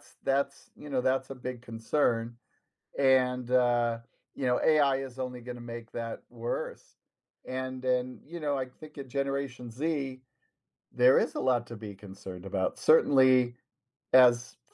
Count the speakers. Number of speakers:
1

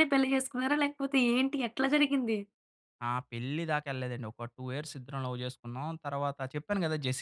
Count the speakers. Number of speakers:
2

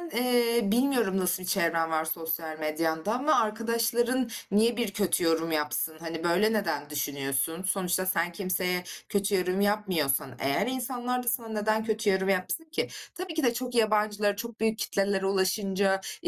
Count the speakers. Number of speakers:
1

